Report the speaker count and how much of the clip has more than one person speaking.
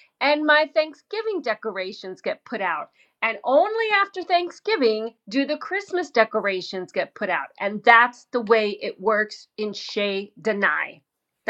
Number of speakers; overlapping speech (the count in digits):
1, no overlap